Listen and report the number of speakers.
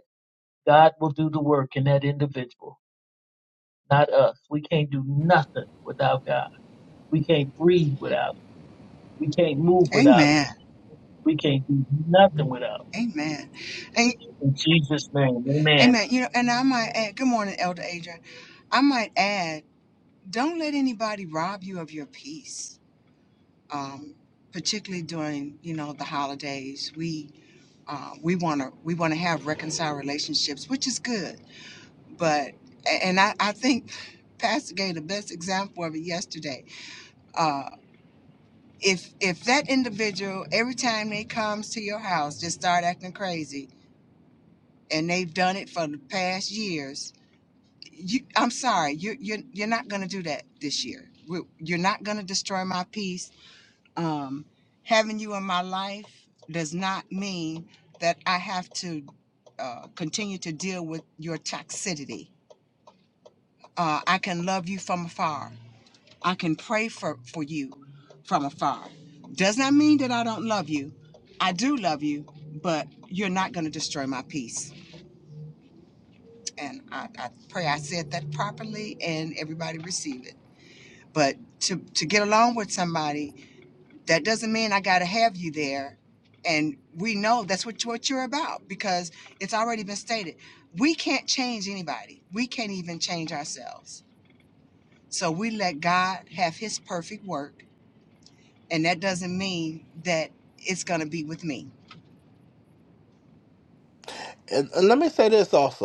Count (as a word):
three